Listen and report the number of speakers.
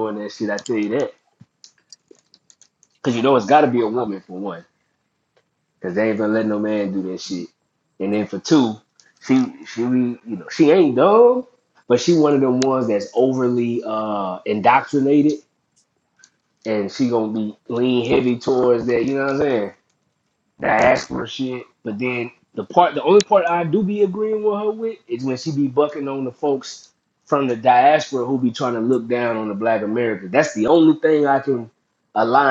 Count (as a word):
one